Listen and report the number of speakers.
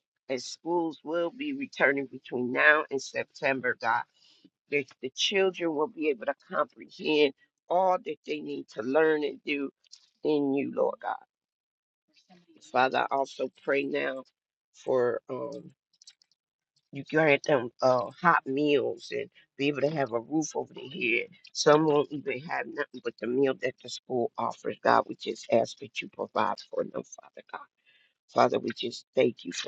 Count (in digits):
1